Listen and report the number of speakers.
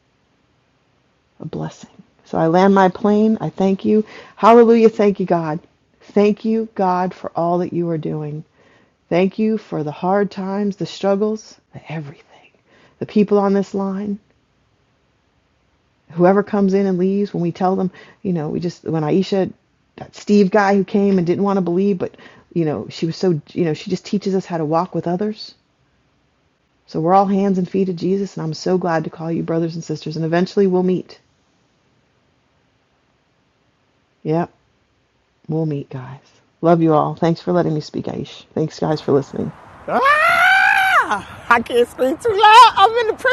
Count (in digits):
2